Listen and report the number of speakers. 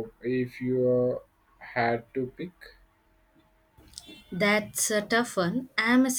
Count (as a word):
two